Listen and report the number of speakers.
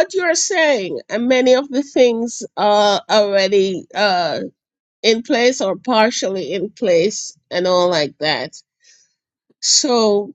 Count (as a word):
one